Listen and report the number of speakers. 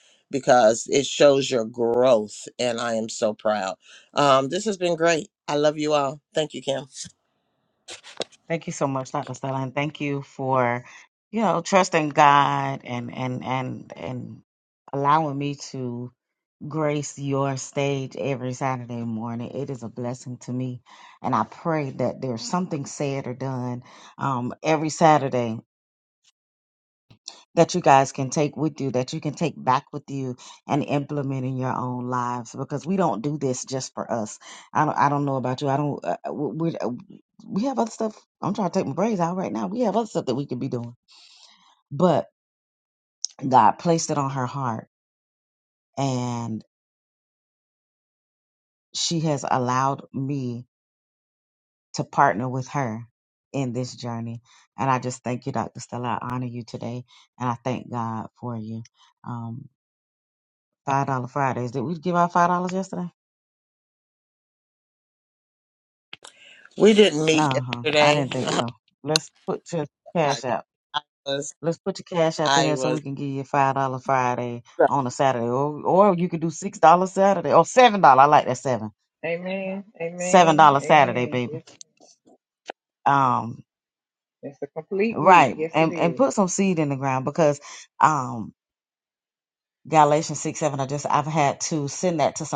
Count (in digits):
3